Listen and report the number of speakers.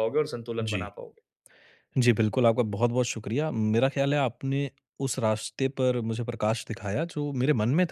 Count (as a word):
two